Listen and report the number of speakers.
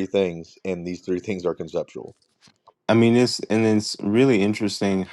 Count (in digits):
2